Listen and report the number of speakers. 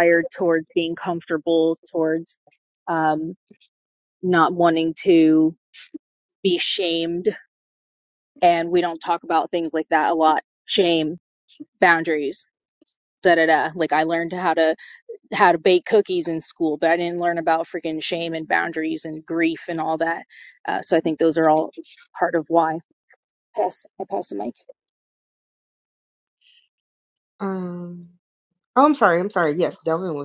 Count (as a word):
two